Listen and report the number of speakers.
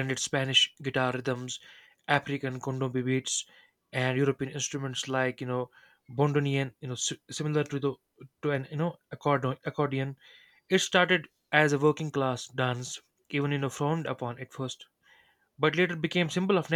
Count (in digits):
1